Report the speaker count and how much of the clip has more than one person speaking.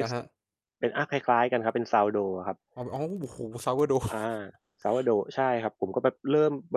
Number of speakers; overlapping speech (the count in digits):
2, about 2%